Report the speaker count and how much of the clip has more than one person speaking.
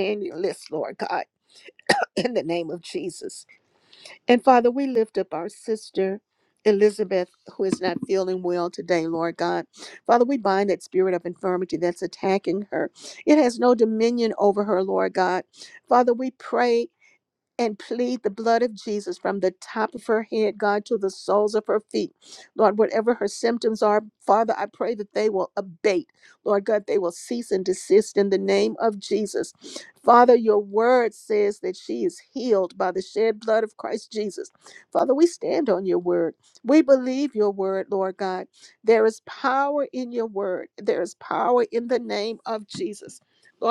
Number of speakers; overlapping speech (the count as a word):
one, no overlap